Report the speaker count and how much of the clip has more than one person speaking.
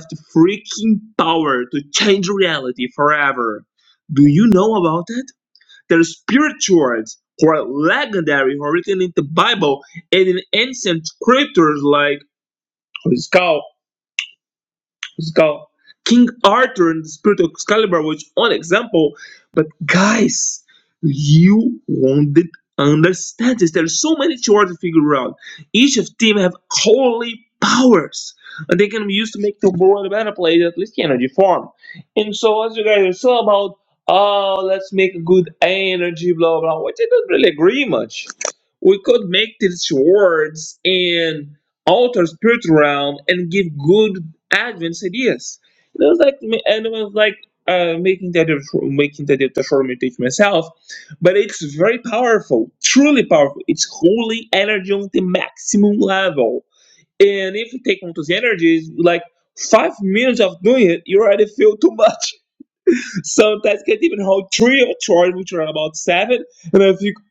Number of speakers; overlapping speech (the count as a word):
one, no overlap